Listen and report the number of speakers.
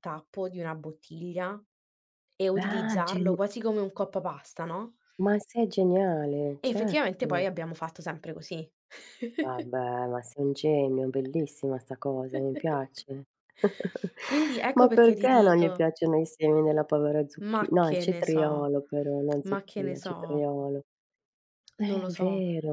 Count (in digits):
2